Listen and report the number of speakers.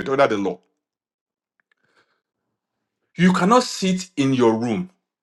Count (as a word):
one